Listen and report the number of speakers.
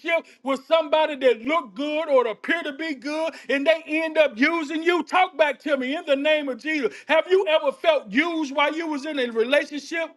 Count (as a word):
one